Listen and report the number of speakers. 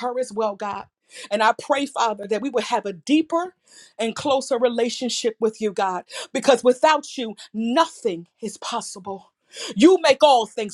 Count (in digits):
1